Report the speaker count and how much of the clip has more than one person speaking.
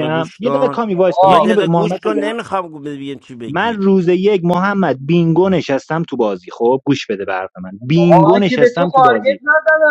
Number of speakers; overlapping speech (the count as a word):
three, about 40%